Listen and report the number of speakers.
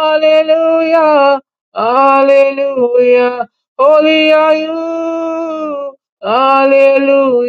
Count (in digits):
1